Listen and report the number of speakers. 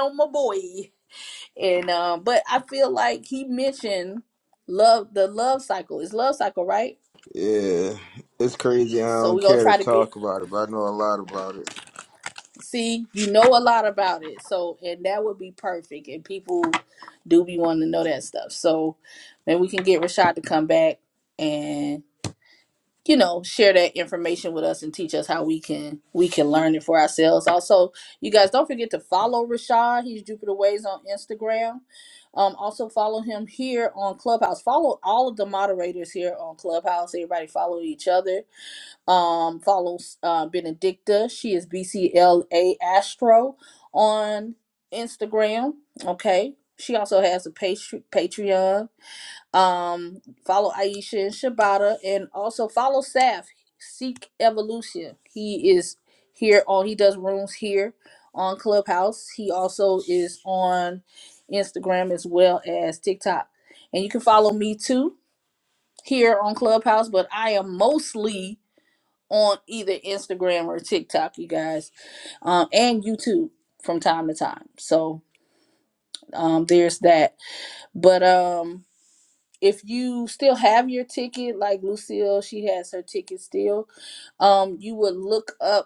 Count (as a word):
two